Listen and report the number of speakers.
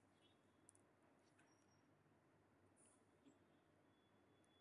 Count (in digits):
0